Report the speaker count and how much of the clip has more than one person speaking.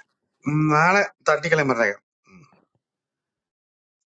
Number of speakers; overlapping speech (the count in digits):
1, no overlap